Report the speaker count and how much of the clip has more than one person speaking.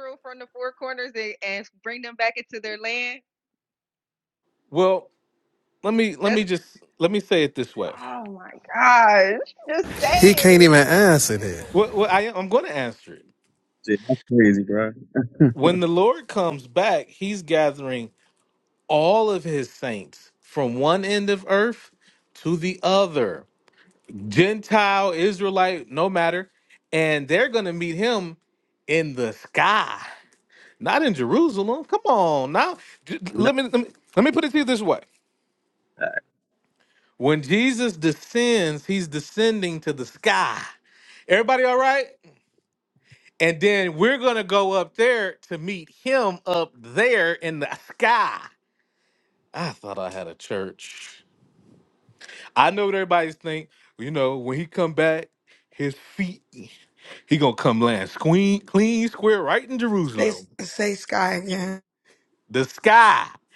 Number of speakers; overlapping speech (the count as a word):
five, about 2%